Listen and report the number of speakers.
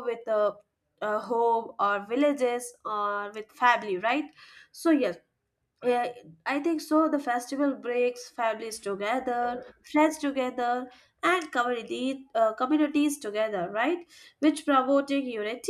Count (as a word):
one